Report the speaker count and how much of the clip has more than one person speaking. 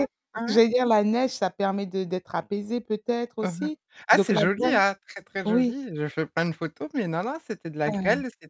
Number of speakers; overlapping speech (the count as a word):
two, about 19%